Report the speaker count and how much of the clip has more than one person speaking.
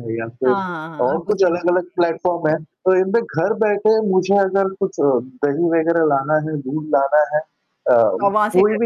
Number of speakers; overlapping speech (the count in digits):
2, about 14%